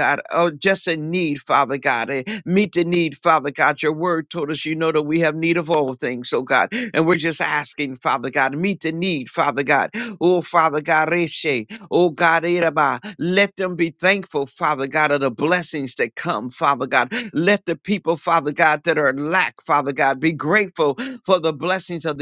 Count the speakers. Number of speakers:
one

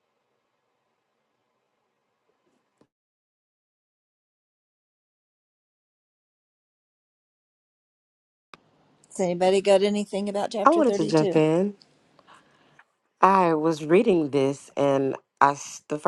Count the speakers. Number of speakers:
two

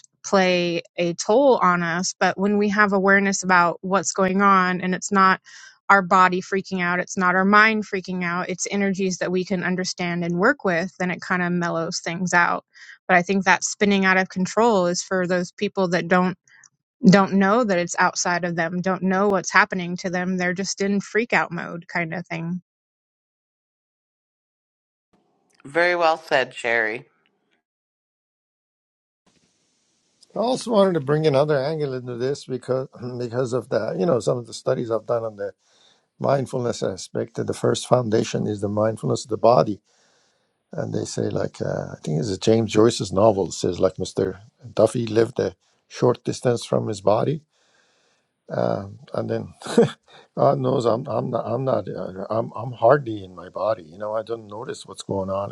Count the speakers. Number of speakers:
three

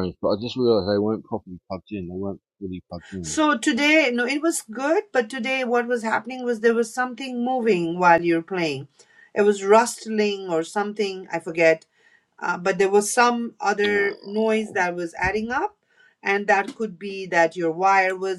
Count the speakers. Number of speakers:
two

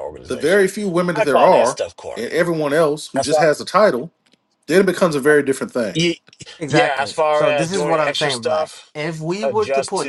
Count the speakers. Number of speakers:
three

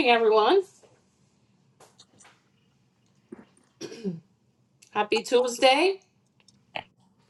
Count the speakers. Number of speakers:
one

